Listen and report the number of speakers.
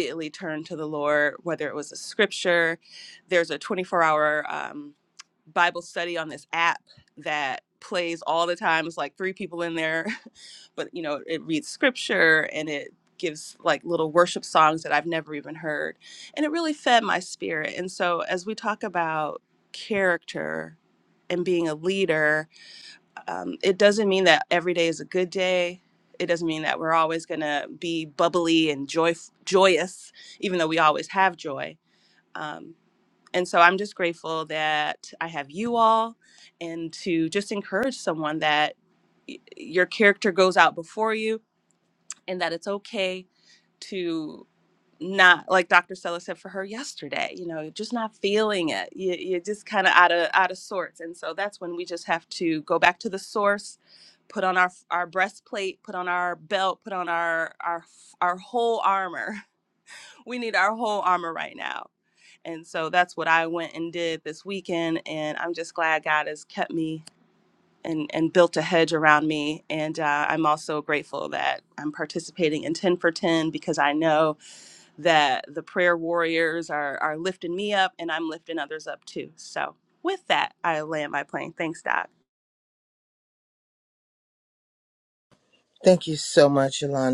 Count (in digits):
2